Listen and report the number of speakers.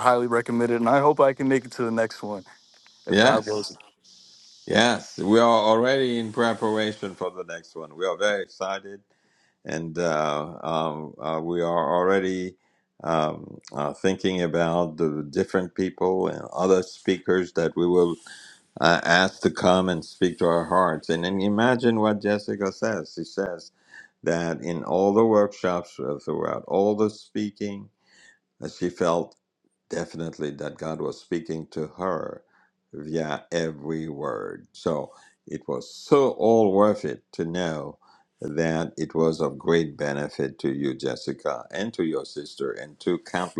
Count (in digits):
2